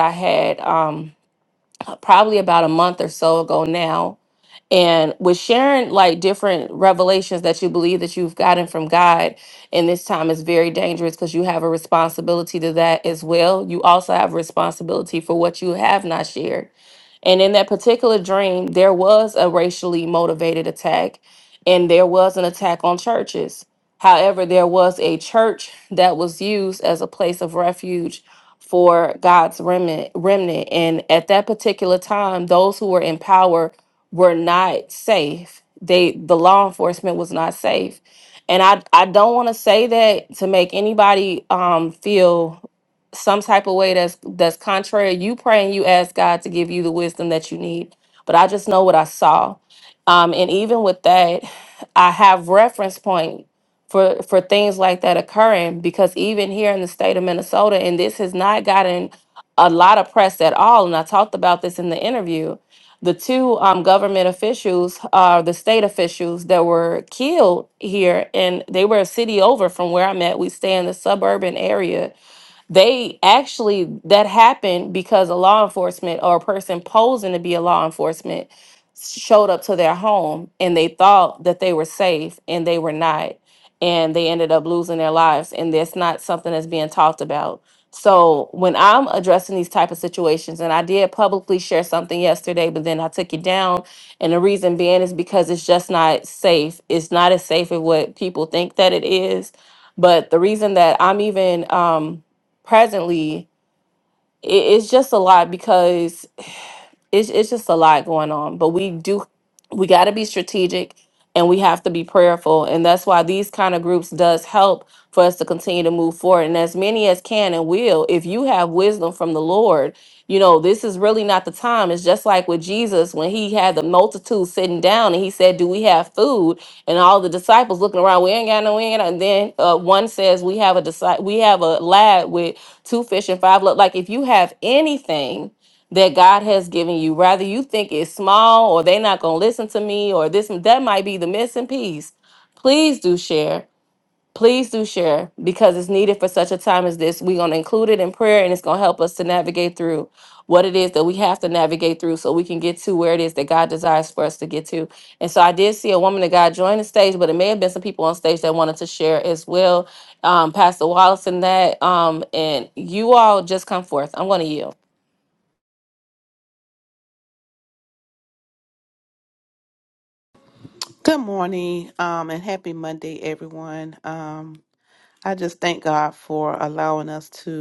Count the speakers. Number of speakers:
2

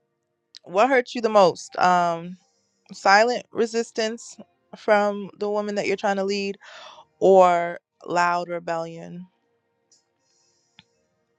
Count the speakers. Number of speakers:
1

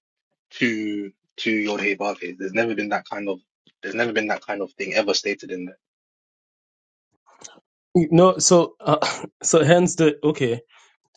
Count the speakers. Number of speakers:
2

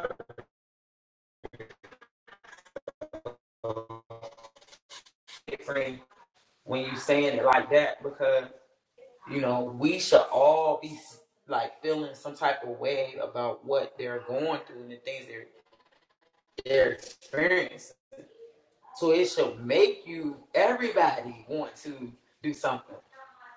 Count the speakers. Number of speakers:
1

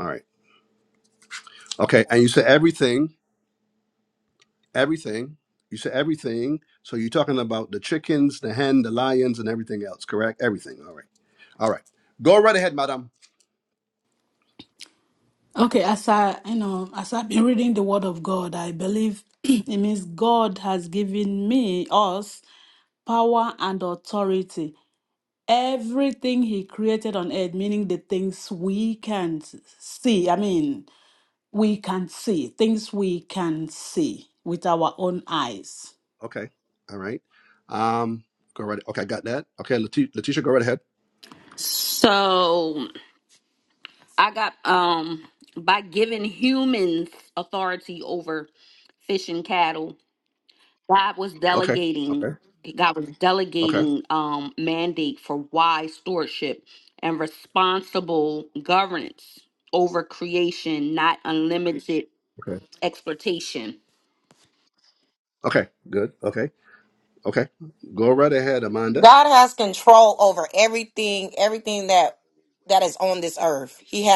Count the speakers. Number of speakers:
4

